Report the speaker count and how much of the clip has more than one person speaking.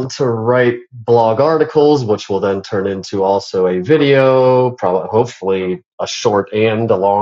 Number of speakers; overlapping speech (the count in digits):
1, no overlap